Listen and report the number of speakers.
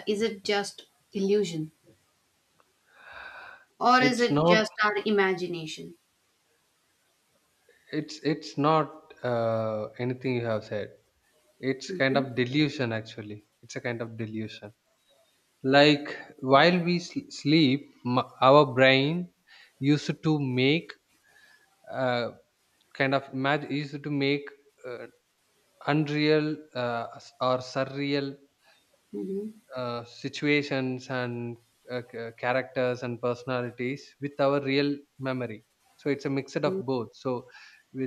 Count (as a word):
two